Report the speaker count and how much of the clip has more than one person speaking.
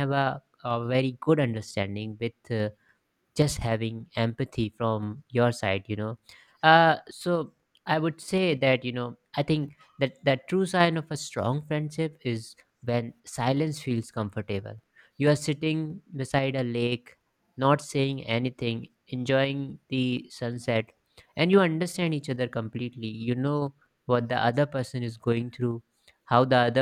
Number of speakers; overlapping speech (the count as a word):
one, no overlap